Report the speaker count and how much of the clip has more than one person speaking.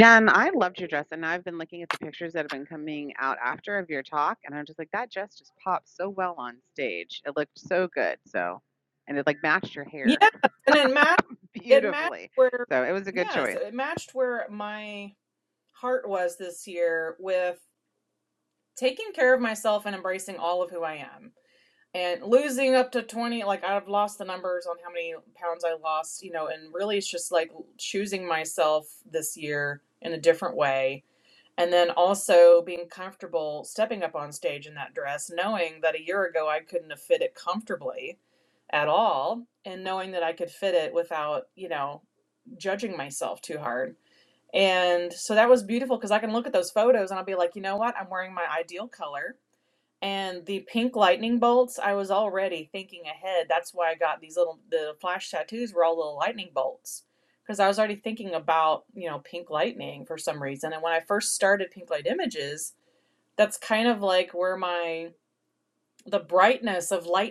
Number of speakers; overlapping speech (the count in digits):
2, about 2%